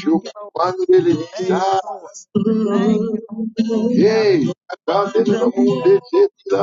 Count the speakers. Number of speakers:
2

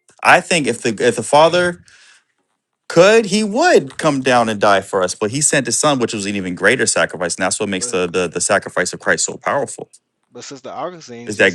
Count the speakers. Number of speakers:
2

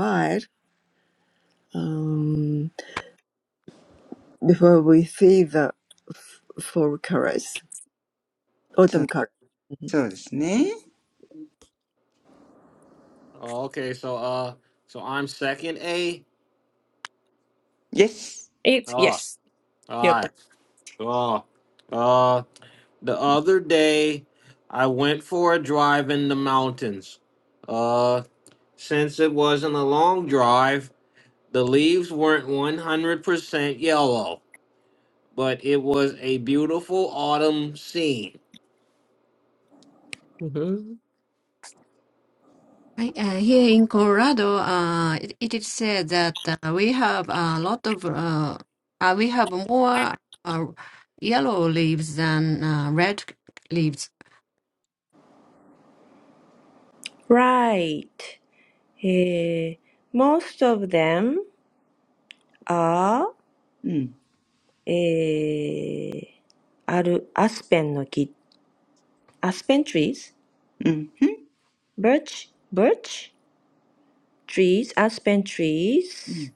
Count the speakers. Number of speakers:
6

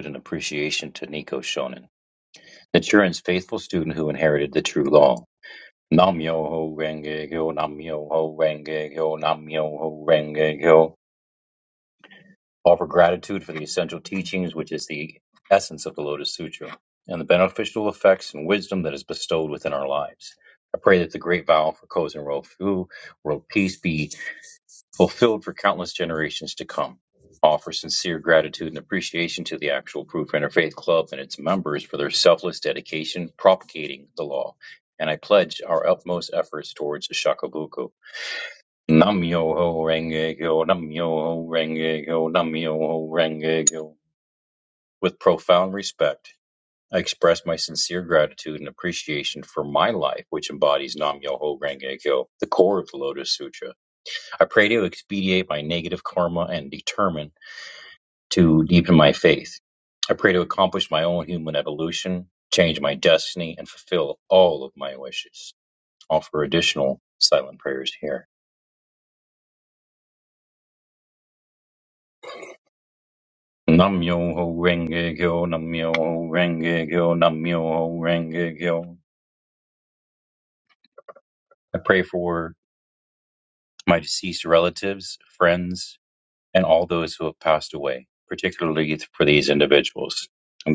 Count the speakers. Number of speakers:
1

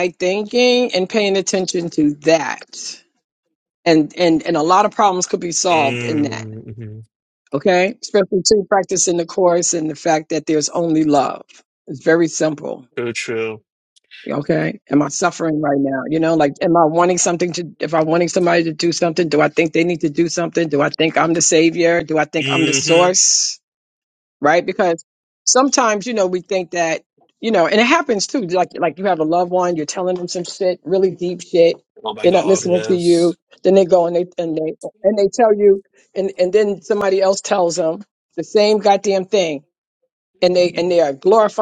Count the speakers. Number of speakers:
2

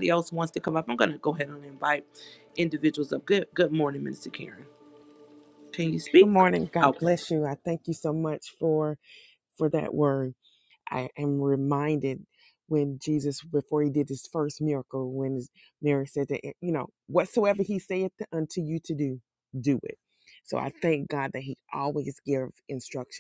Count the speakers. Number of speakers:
2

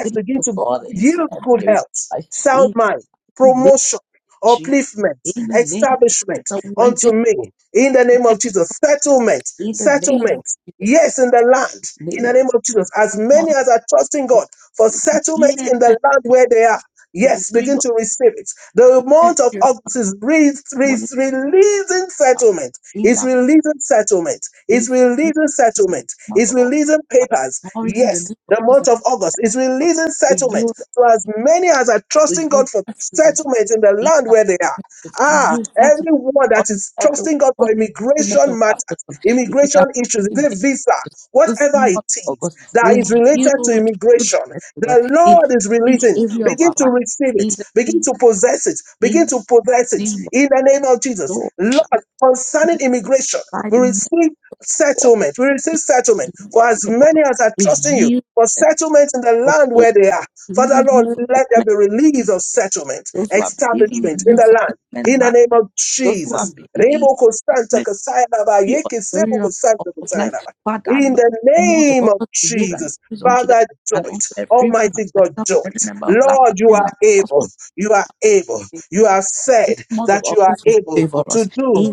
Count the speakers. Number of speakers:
2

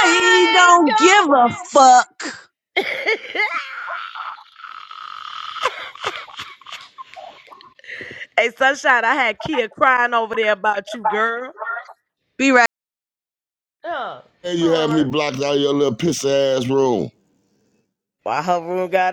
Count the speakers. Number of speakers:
3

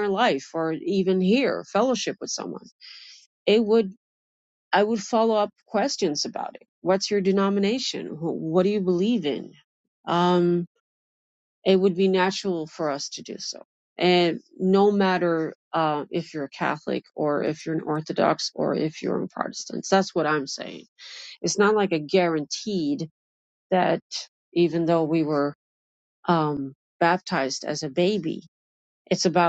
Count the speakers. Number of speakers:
1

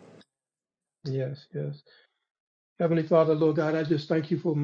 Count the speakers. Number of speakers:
1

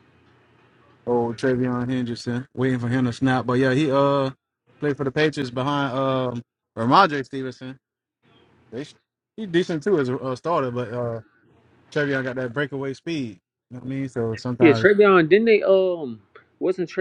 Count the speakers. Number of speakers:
2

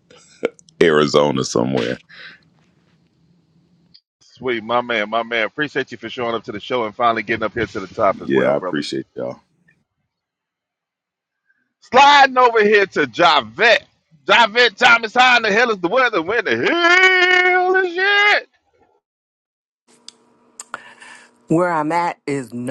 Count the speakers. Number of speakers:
3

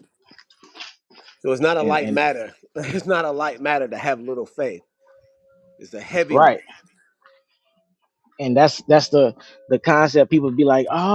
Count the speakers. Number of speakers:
2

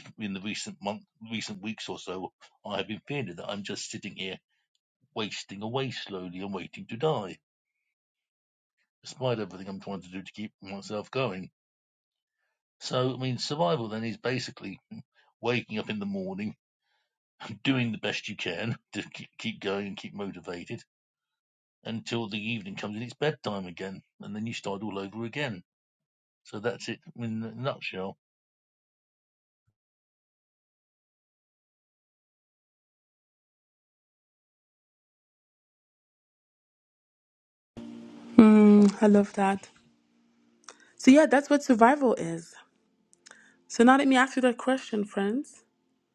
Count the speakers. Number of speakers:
2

